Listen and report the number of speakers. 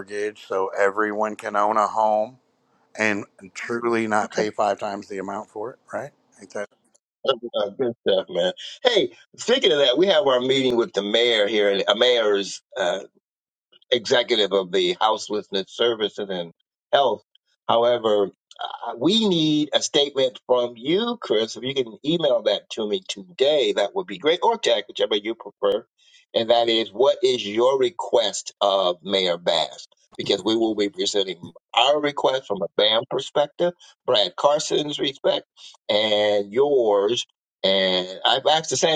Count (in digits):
2